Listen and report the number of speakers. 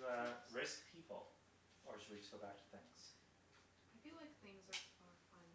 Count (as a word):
two